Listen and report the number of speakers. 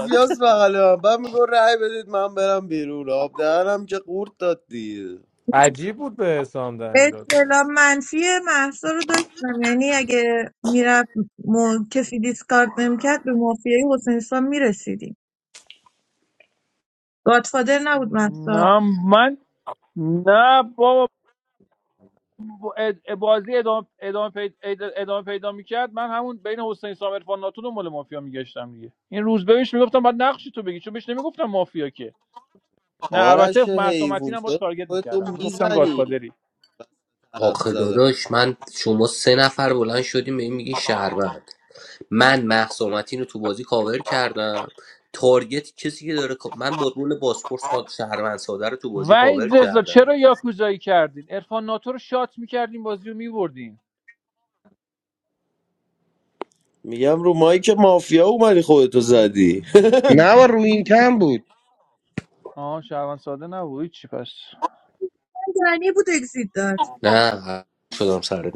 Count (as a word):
six